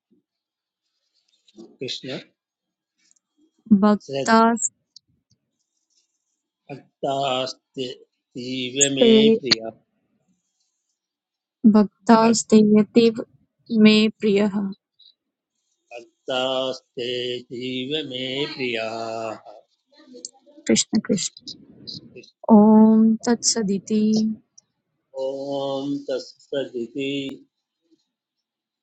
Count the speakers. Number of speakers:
2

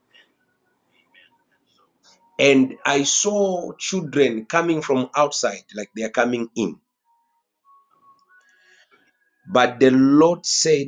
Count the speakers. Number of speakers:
1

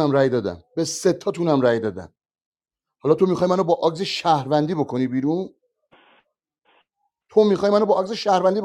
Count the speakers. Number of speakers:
1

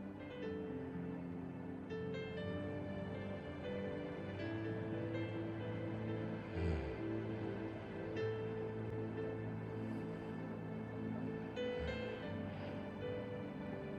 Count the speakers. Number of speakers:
0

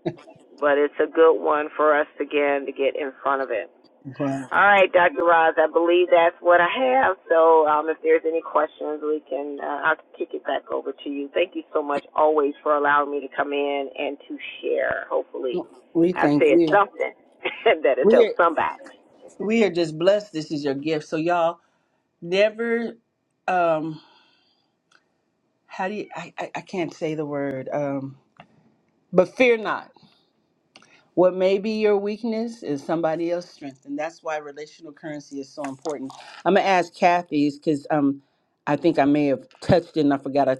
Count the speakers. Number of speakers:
2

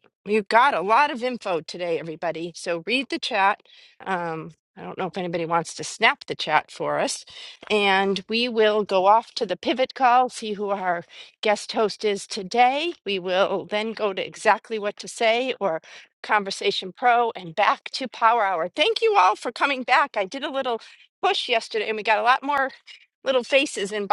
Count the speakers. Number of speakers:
1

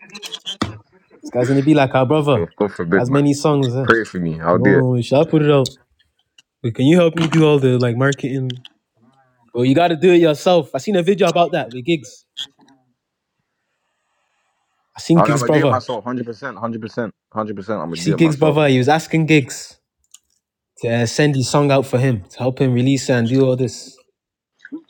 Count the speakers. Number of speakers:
2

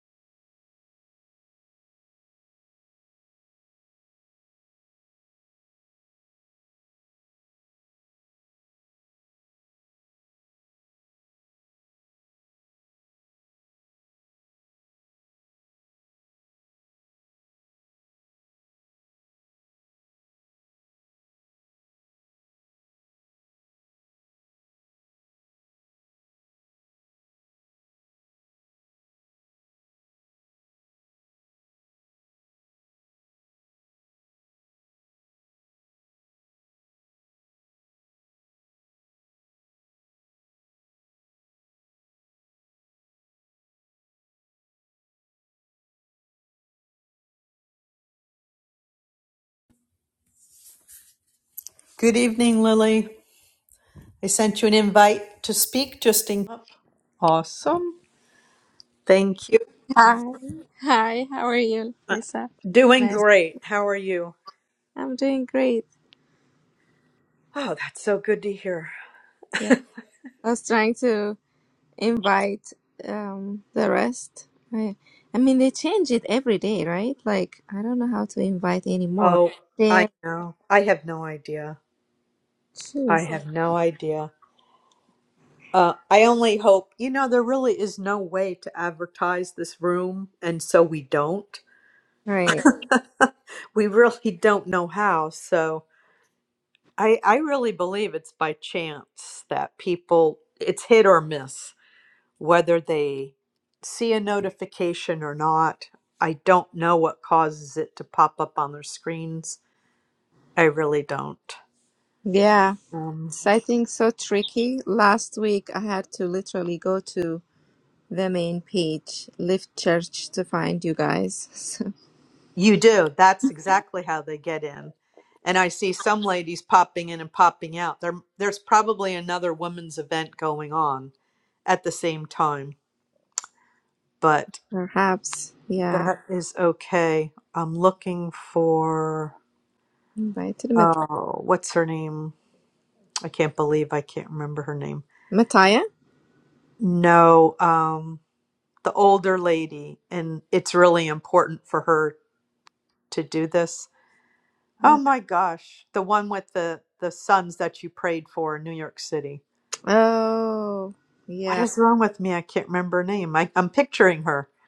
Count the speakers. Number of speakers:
2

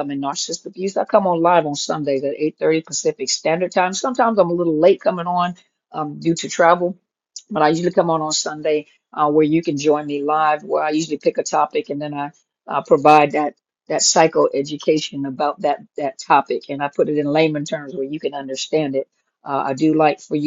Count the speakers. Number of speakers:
1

